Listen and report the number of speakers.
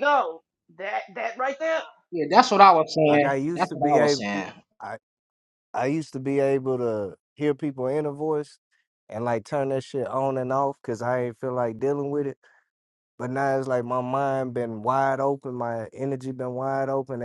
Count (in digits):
3